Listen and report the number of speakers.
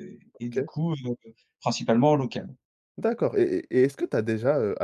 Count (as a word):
two